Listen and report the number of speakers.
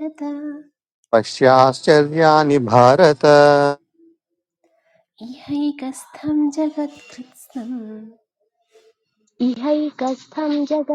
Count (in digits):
3